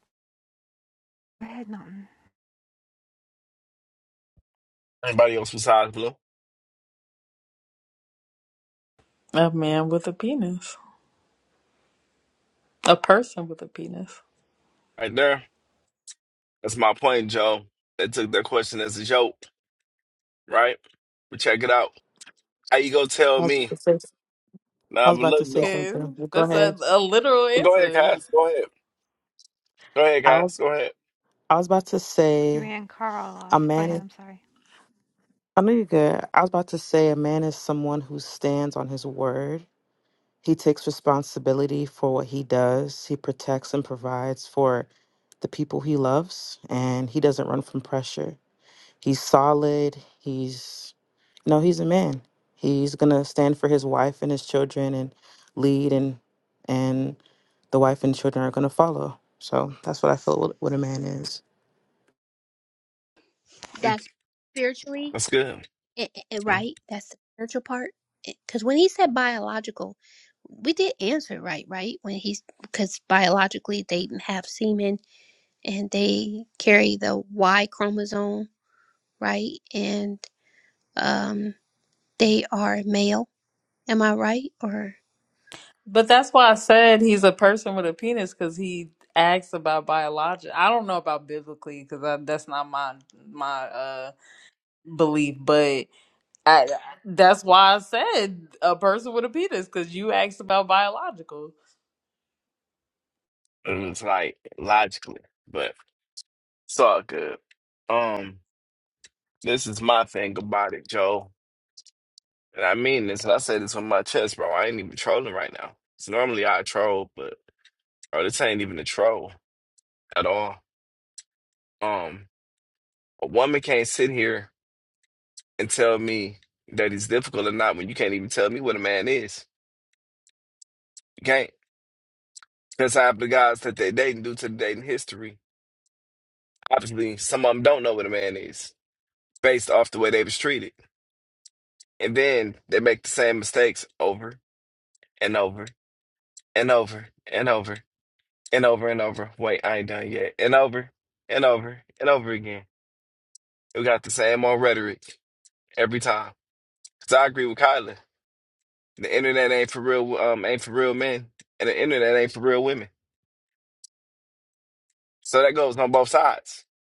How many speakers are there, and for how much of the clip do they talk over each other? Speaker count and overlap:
five, about 2%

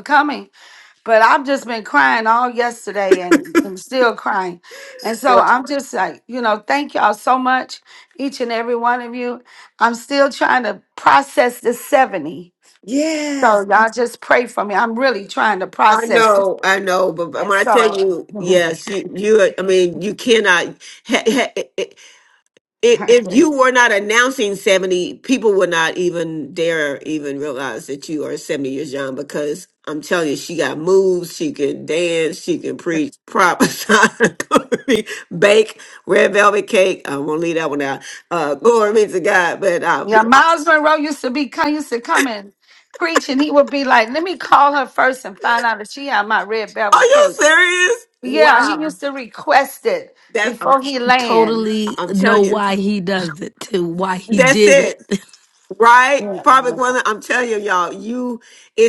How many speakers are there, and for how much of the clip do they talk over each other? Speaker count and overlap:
three, about 10%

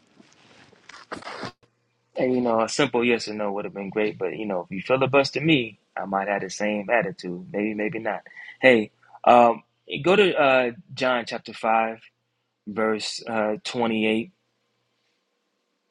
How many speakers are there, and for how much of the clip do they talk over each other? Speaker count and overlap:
one, no overlap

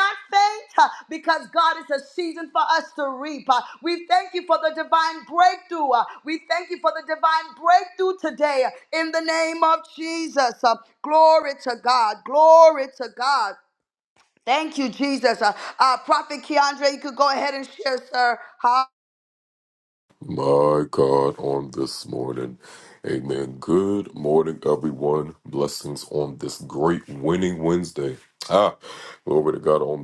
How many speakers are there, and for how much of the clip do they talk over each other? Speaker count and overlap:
two, no overlap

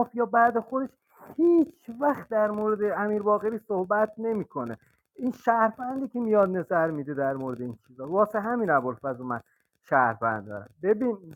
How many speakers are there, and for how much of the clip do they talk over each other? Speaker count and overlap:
one, no overlap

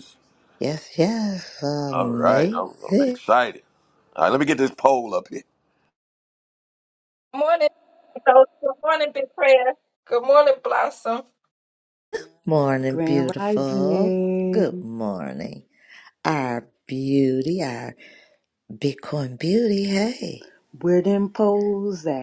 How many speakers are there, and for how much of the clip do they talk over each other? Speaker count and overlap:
four, about 8%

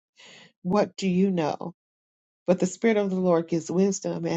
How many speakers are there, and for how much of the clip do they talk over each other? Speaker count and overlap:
one, no overlap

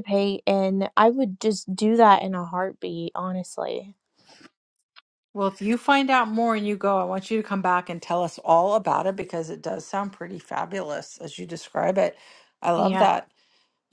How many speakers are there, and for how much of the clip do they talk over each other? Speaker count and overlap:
two, about 2%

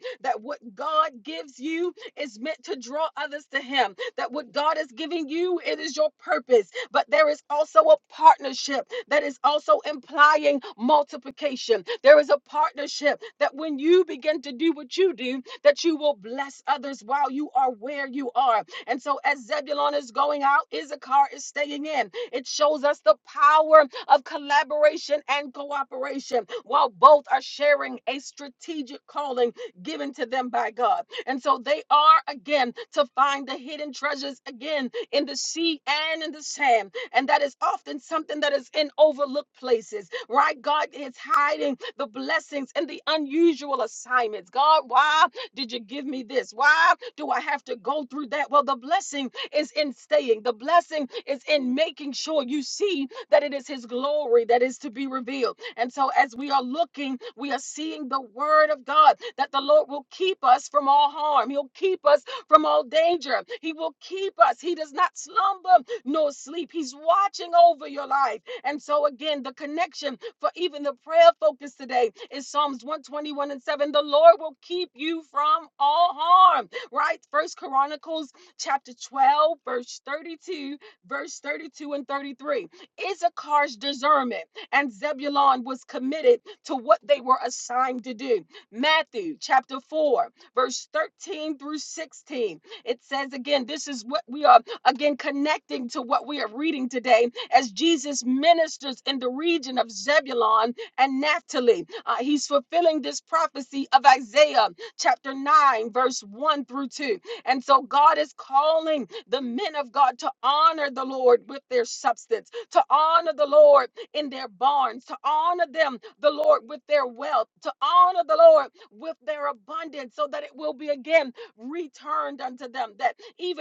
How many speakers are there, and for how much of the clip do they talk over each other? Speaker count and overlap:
one, no overlap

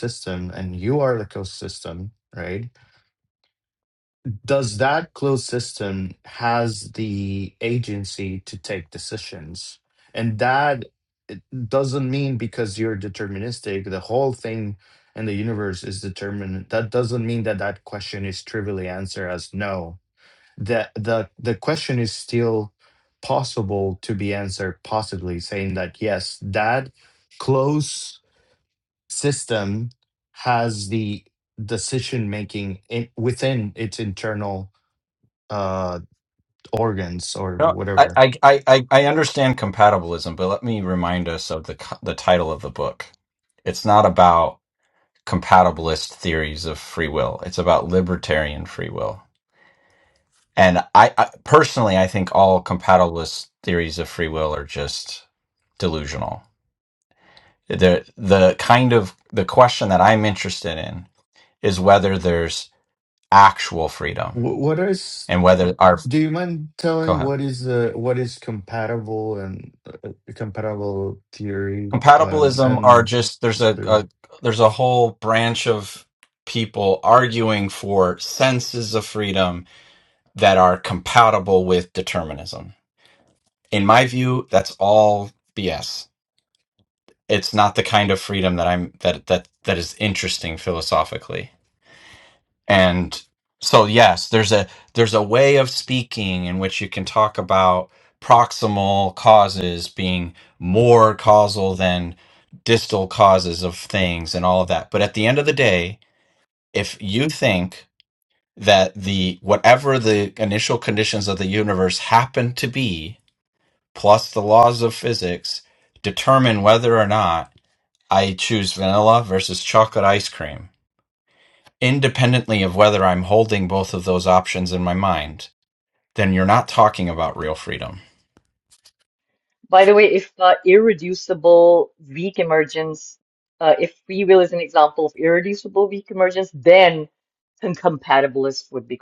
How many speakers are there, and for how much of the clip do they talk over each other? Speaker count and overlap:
three, about 1%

